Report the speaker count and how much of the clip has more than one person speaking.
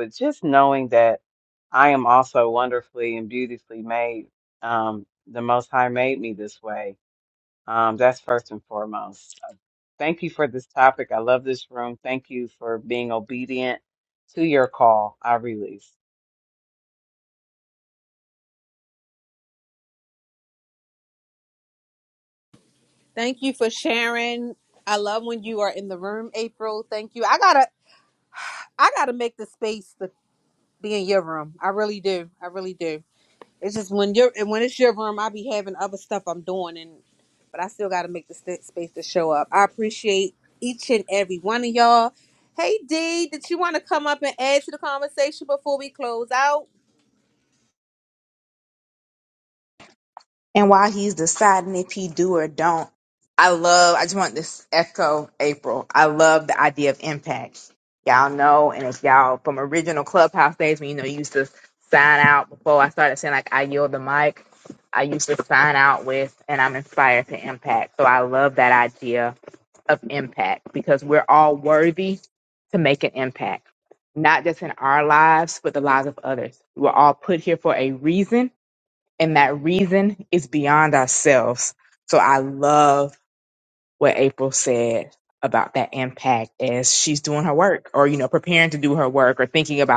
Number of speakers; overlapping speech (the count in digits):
3, no overlap